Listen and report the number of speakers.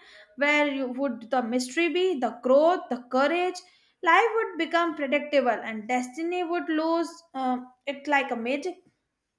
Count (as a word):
one